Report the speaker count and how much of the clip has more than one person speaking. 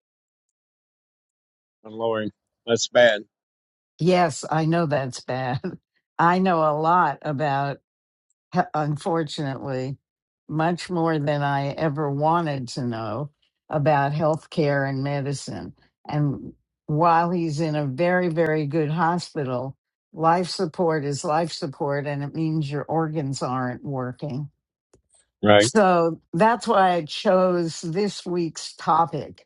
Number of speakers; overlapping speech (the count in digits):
2, under 1%